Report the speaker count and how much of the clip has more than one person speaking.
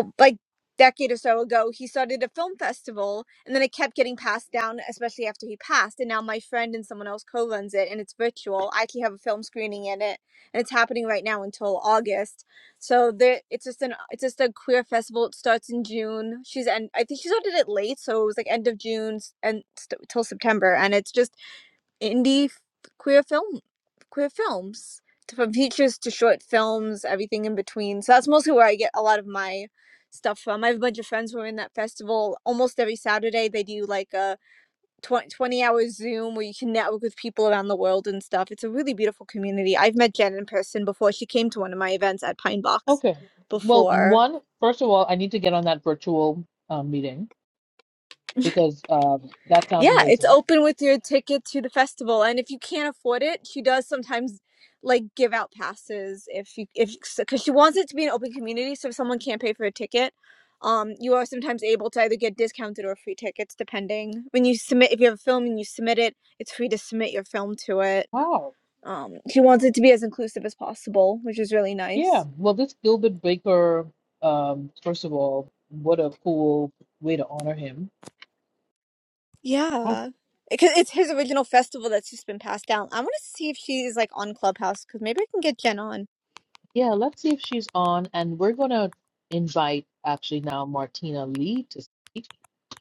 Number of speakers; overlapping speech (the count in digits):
2, about 2%